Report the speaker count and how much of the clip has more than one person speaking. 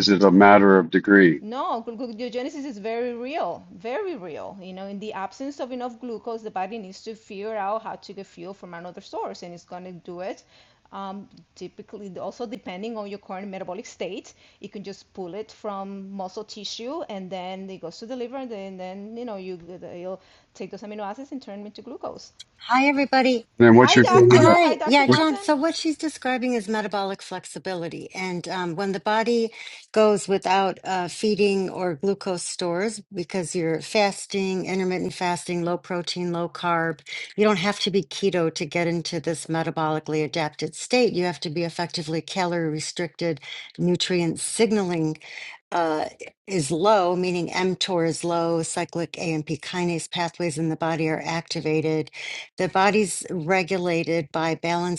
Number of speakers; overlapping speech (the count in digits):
3, about 3%